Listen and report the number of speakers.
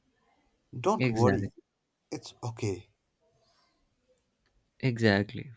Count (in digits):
2